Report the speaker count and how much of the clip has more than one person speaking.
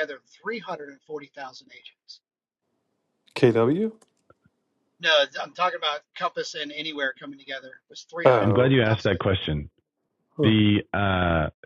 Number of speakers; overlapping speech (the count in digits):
3, about 8%